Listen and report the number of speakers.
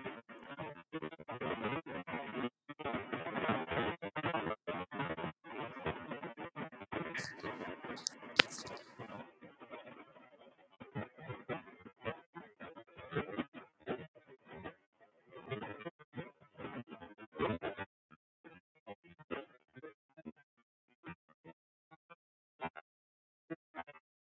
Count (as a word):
zero